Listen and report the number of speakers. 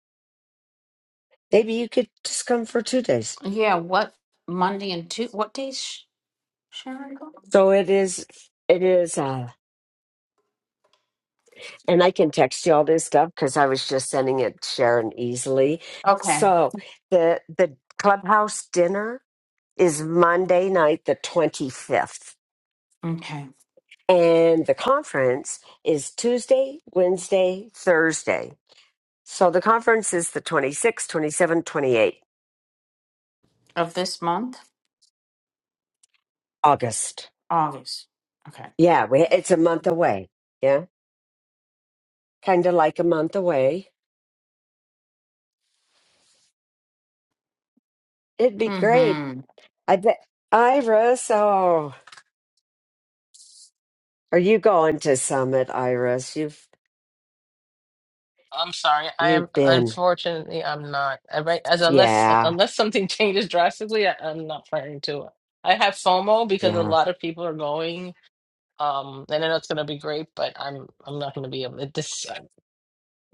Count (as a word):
three